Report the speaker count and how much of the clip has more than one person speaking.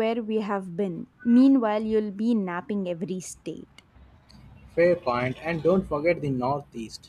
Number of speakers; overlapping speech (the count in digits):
2, no overlap